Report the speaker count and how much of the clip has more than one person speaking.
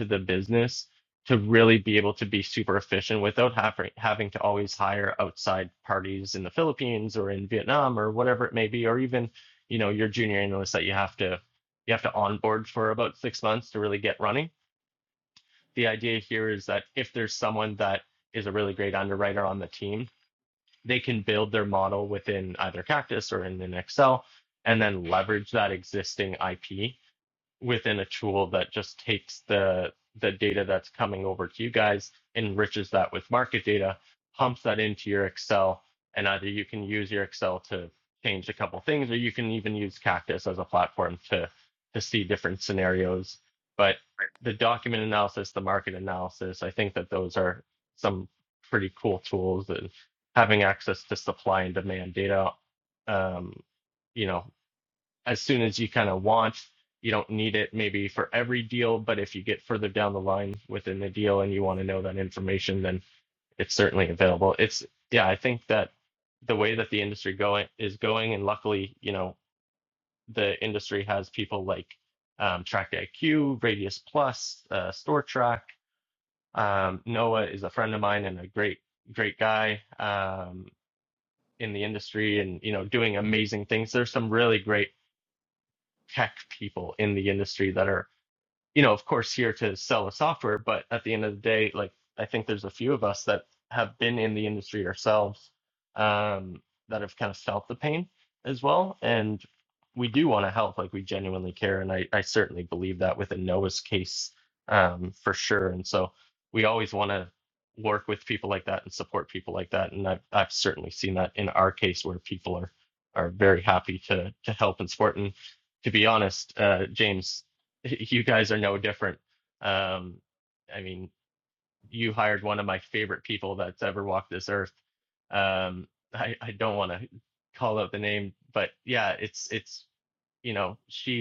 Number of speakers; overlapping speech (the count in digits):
1, no overlap